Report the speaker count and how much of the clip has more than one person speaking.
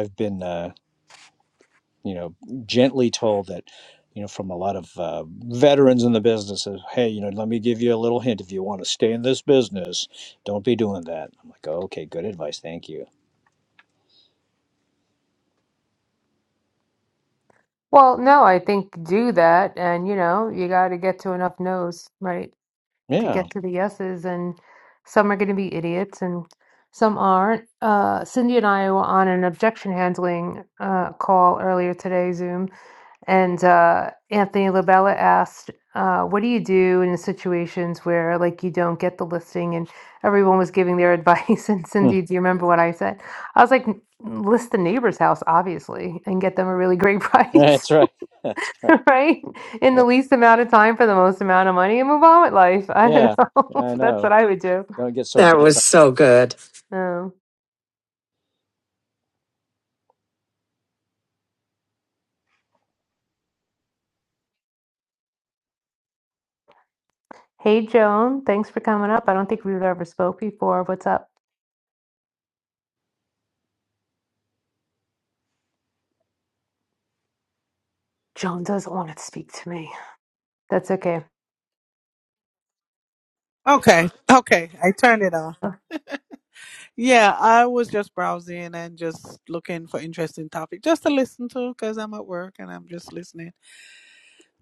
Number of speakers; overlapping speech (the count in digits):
4, about 2%